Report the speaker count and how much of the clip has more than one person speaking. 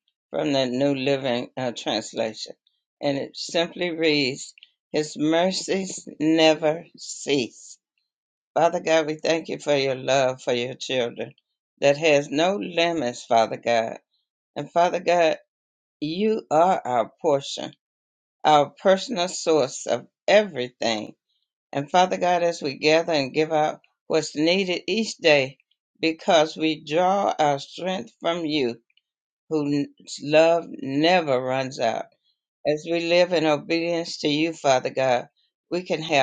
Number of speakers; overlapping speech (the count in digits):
1, no overlap